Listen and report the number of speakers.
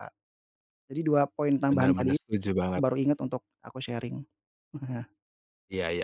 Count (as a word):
two